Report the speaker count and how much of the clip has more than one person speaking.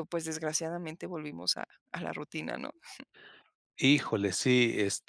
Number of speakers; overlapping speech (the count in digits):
2, no overlap